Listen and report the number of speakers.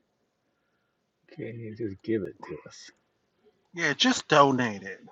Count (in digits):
2